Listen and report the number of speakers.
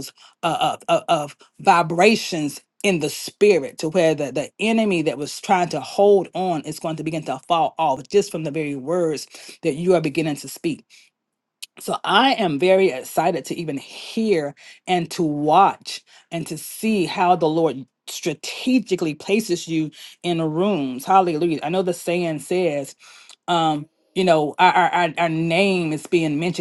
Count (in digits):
1